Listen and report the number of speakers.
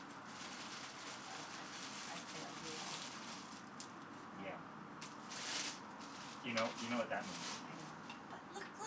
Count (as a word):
two